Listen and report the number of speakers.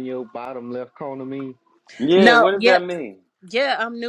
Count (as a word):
three